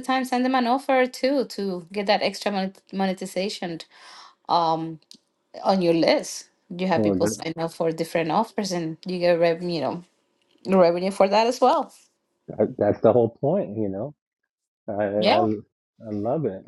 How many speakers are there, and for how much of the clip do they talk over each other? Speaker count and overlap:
2, about 4%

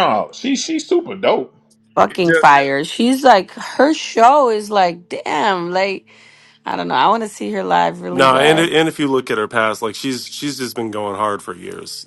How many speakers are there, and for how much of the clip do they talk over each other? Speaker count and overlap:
3, about 8%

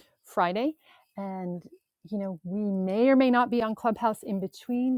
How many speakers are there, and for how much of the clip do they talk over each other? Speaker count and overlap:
1, no overlap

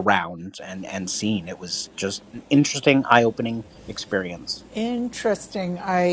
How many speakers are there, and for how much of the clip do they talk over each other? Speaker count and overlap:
2, no overlap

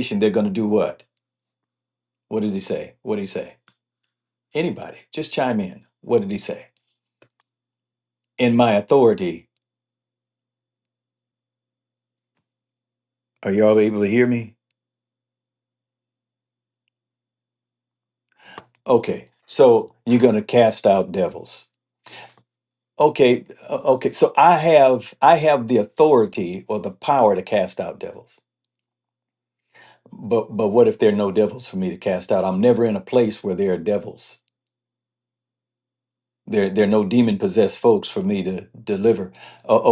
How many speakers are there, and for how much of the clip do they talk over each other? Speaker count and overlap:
1, no overlap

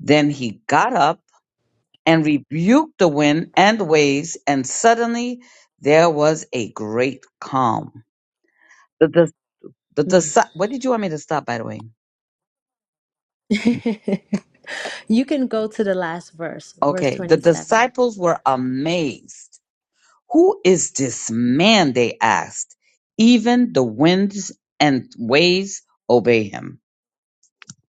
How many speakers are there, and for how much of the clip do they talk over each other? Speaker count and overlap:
2, about 5%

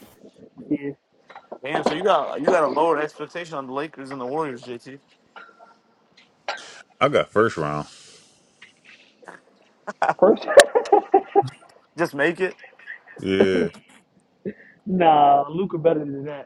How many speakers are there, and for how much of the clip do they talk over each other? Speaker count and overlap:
3, no overlap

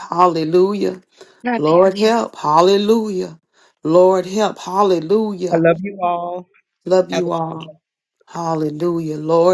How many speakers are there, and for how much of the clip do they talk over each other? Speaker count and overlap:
2, about 3%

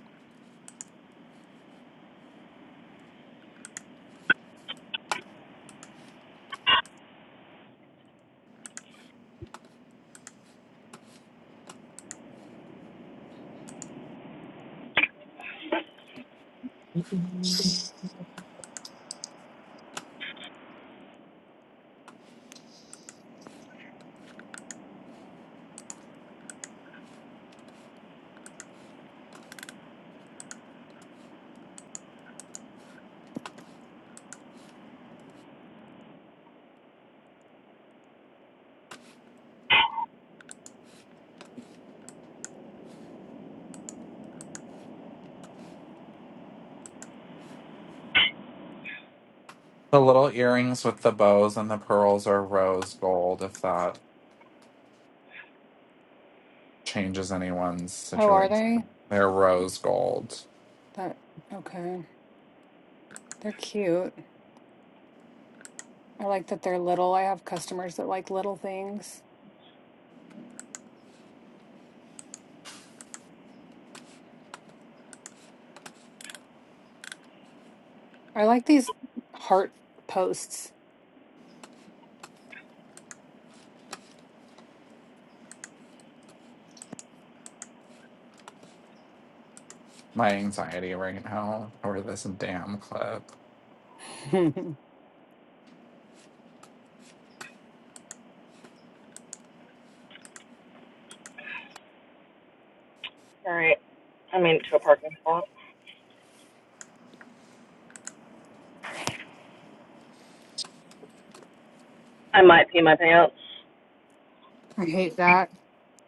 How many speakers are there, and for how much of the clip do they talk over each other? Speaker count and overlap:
3, about 1%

